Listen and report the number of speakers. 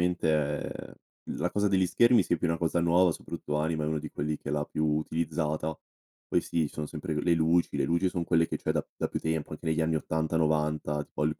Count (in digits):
1